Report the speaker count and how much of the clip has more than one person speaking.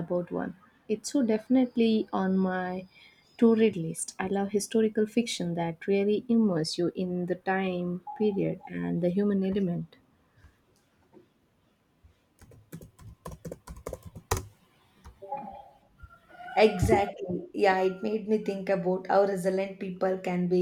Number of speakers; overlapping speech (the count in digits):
2, no overlap